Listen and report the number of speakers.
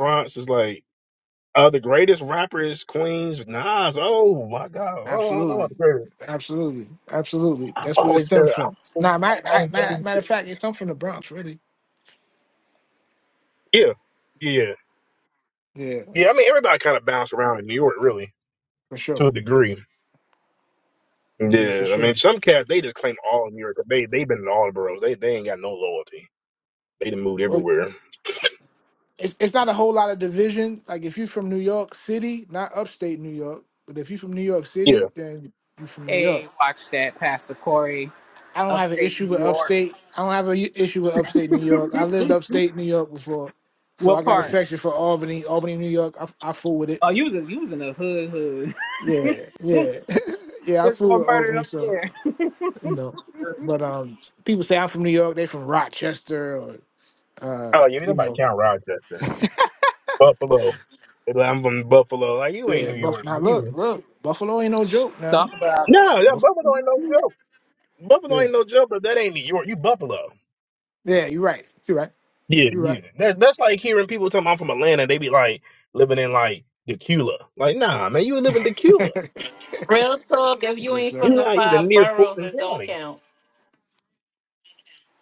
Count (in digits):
4